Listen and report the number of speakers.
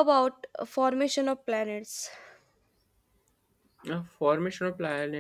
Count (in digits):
2